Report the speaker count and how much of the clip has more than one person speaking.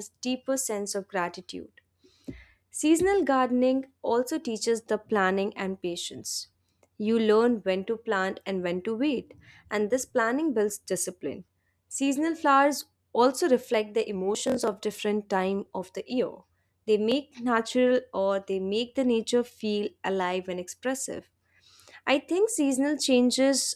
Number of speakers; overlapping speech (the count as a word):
one, no overlap